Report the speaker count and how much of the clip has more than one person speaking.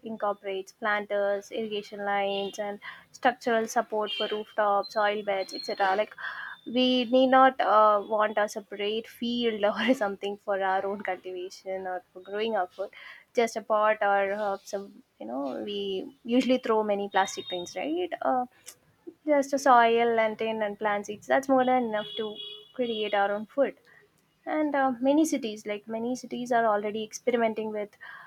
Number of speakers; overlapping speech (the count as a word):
one, no overlap